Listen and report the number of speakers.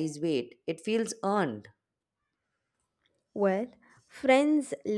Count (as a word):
two